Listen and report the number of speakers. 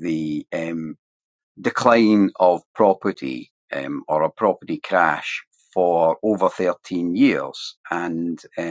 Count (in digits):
1